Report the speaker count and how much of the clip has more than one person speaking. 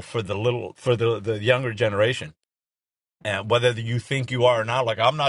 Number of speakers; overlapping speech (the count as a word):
one, no overlap